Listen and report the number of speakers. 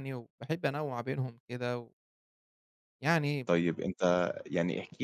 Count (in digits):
2